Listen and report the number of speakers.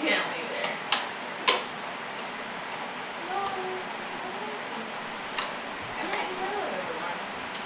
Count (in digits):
1